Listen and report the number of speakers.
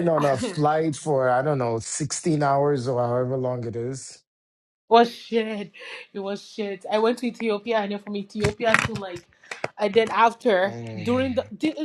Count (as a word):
two